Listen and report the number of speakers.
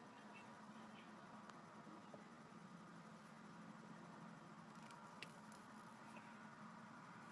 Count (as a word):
zero